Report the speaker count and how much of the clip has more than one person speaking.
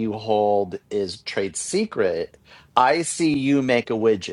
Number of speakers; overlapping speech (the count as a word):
one, no overlap